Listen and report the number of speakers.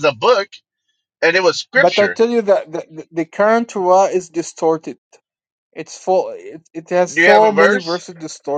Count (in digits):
2